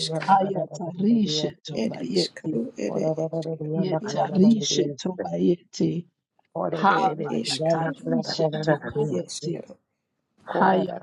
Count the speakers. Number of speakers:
three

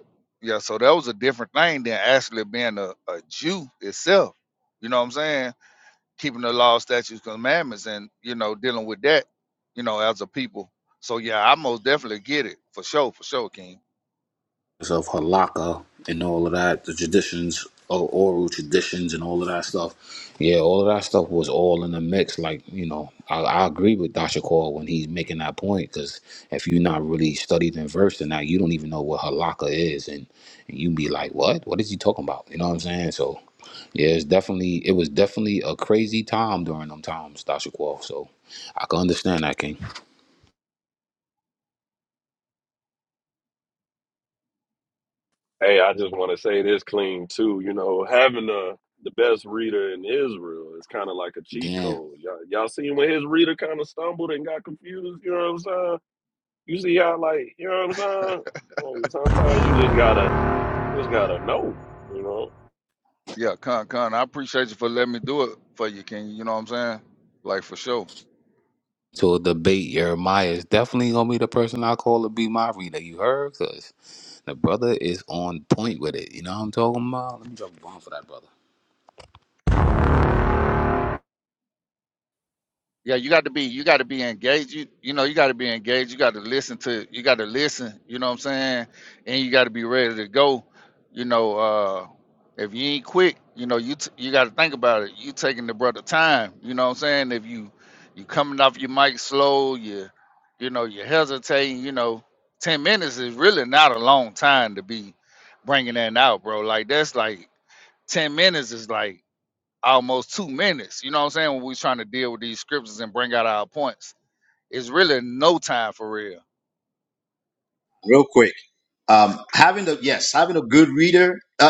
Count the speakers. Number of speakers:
four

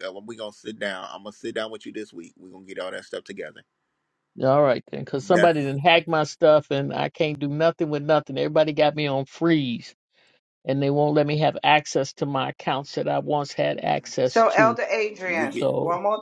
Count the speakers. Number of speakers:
three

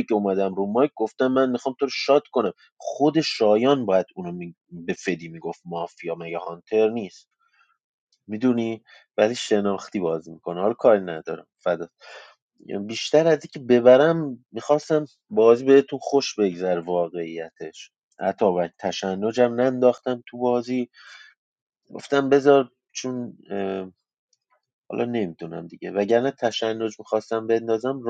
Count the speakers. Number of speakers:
one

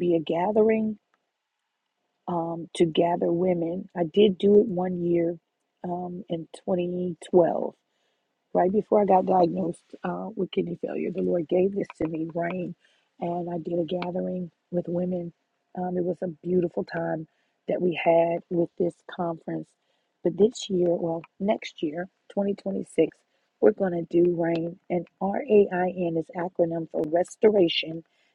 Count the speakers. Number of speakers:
one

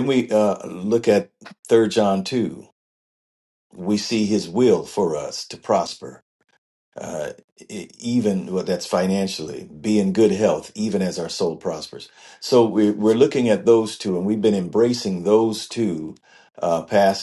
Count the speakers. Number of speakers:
one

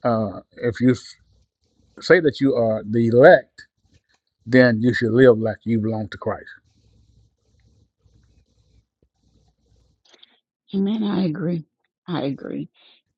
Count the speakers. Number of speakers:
two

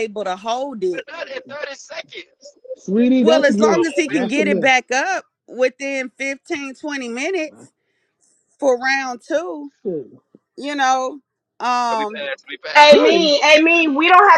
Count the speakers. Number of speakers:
four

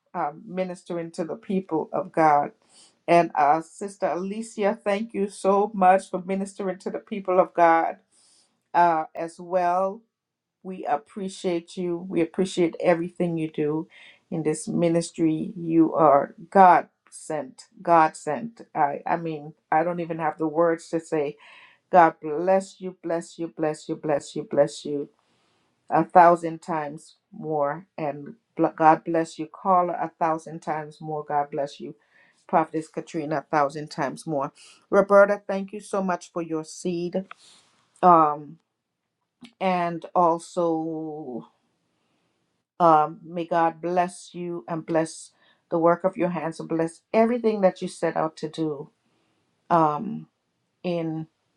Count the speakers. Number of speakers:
one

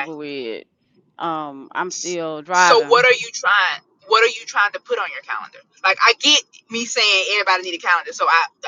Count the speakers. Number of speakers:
two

